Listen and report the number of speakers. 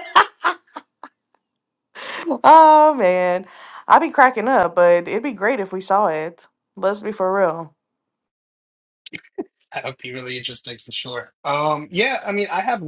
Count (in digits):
2